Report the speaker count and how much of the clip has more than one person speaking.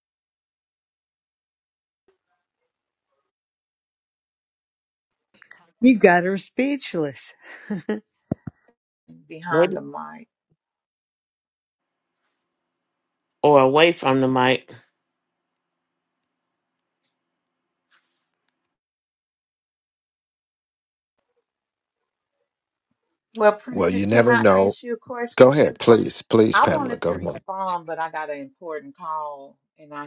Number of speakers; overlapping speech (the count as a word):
four, about 8%